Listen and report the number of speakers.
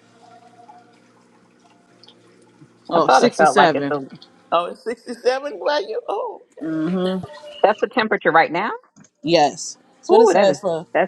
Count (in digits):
3